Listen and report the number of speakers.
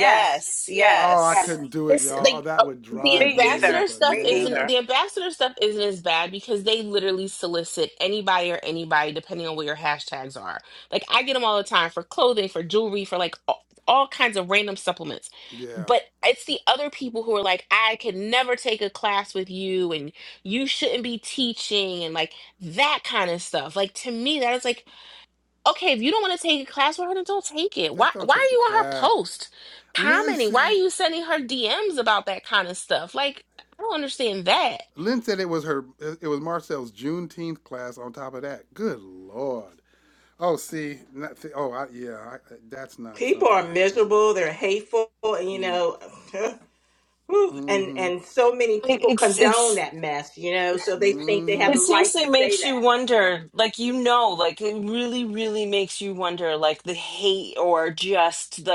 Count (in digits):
4